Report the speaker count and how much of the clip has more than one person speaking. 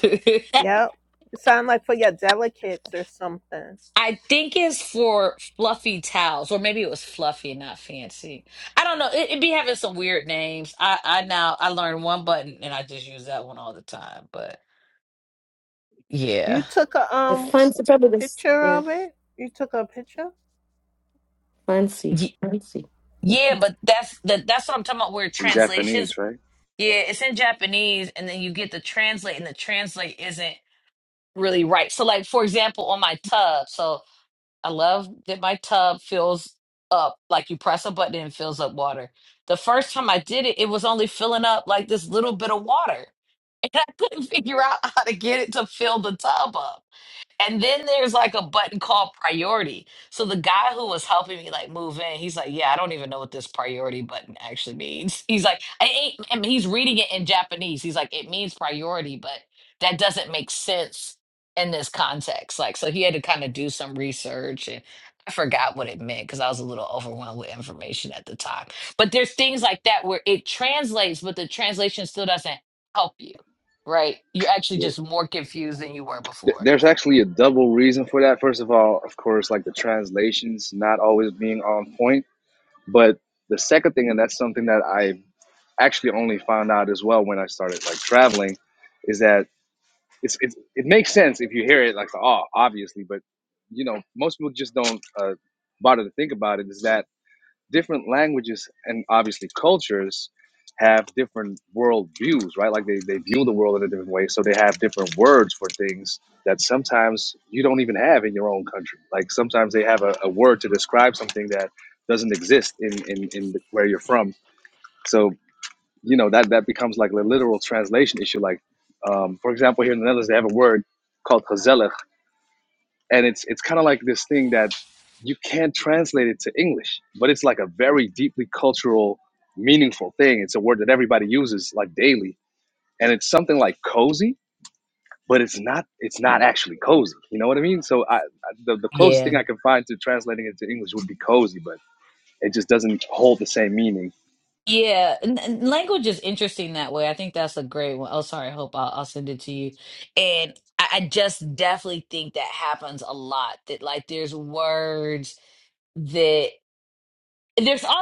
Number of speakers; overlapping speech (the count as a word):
four, about 1%